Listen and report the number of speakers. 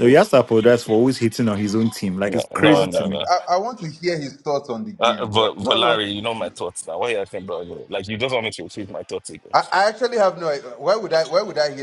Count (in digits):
3